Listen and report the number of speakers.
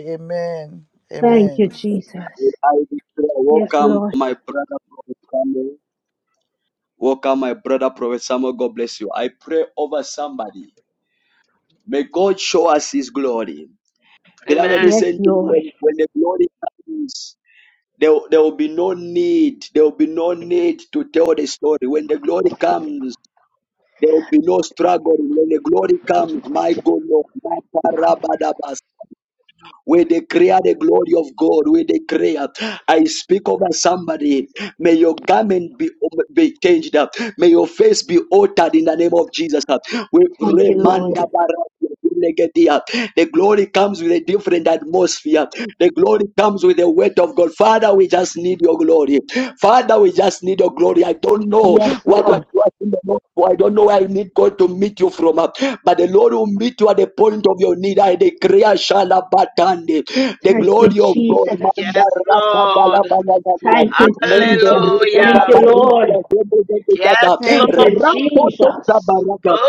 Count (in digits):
4